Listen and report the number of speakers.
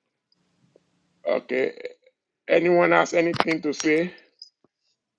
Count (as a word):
one